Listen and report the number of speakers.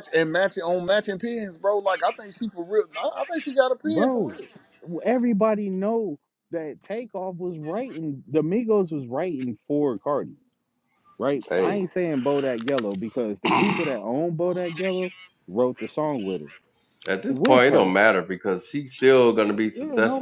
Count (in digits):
3